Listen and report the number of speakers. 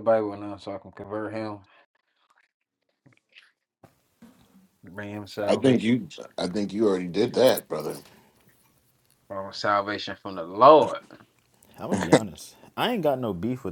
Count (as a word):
three